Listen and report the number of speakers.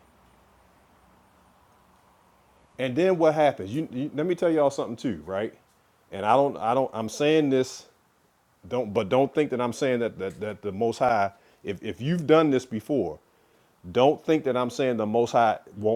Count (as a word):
one